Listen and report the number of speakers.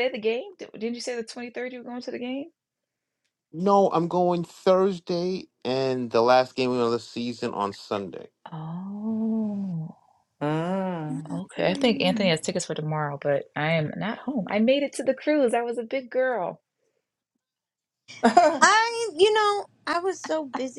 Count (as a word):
four